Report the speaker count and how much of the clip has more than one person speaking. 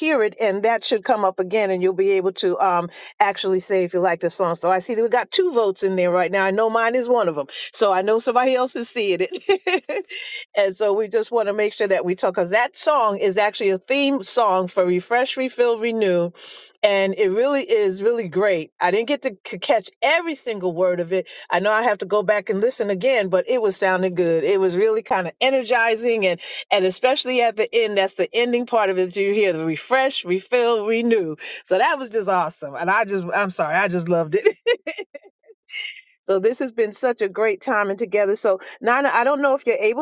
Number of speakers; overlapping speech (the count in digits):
1, no overlap